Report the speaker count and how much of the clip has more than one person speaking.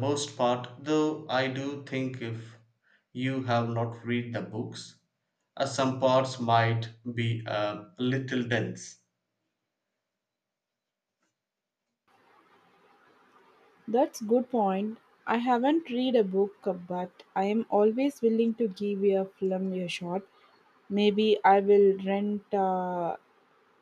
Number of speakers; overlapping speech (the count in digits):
2, no overlap